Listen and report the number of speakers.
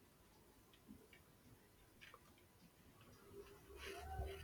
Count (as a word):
zero